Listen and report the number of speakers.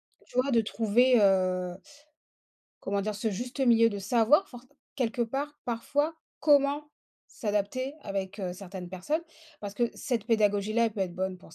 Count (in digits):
1